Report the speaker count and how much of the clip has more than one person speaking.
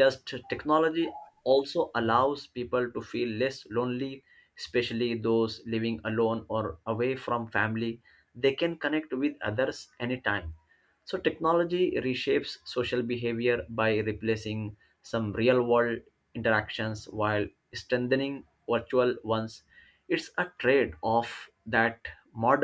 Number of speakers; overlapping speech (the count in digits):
1, no overlap